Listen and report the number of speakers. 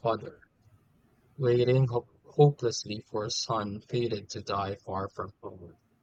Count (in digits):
1